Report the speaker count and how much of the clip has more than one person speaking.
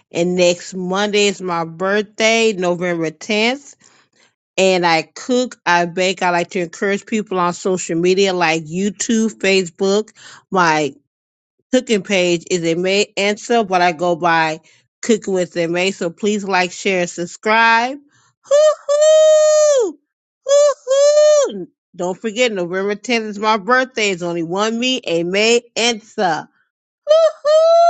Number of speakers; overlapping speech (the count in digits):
1, no overlap